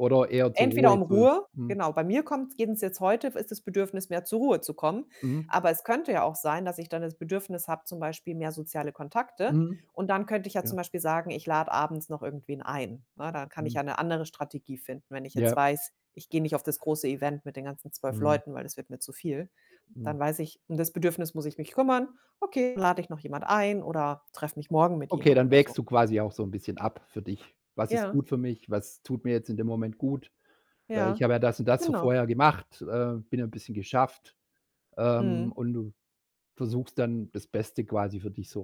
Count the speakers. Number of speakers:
2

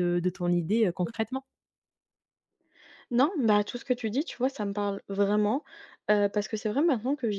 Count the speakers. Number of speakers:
2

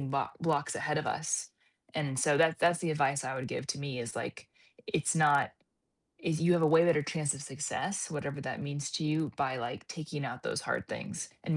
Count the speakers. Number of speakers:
1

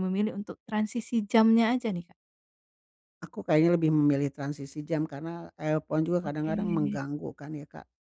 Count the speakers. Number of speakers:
2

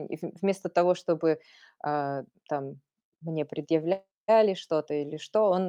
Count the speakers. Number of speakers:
1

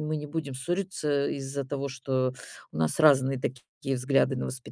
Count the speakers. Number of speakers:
1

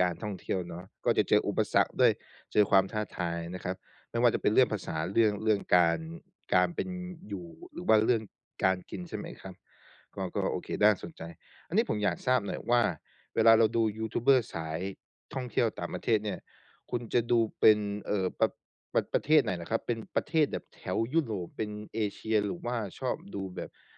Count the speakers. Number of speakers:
1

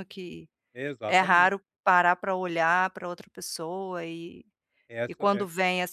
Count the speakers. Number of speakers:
2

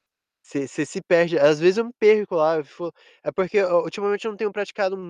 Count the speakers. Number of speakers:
1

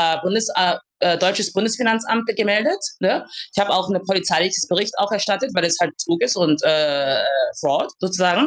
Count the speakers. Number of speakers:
1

